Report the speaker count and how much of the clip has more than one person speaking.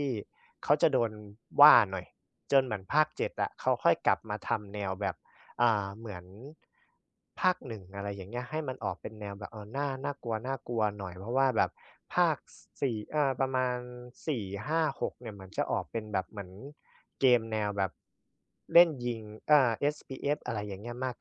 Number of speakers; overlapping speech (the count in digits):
1, no overlap